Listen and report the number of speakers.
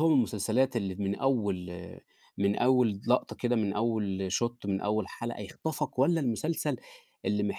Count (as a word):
one